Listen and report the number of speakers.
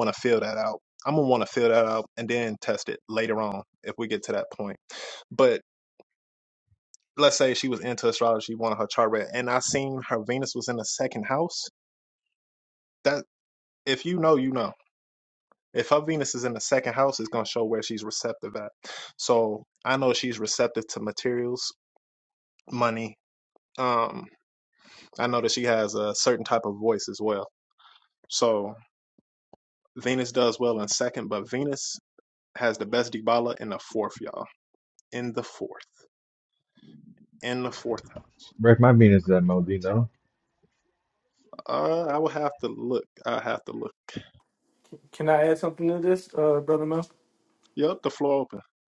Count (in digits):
3